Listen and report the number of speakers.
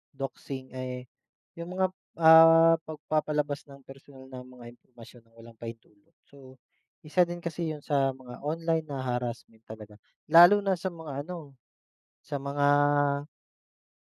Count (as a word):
one